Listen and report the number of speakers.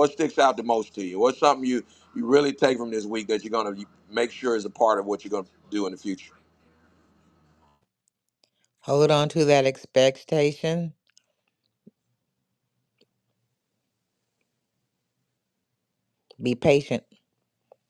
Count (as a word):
two